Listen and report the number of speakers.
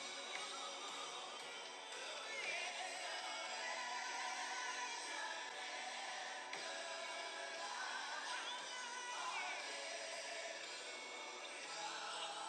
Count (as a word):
zero